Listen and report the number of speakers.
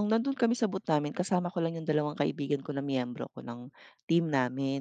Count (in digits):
1